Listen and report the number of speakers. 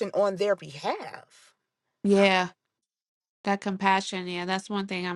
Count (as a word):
two